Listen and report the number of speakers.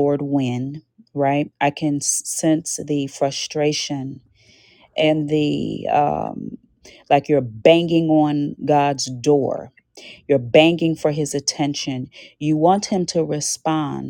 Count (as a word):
one